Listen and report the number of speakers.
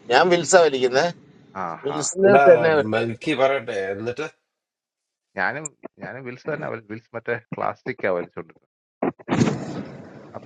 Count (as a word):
three